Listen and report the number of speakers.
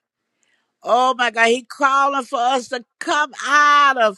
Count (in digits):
1